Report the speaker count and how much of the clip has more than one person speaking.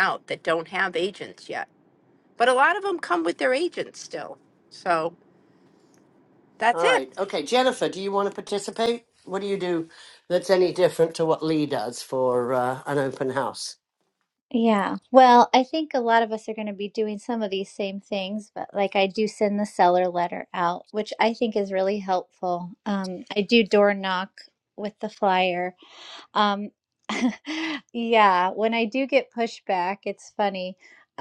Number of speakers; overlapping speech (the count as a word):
three, about 1%